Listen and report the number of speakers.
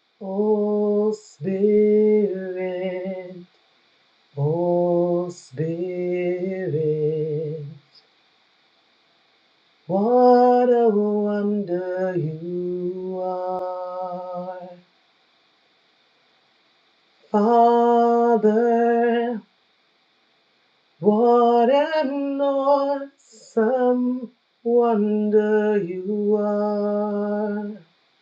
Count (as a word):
one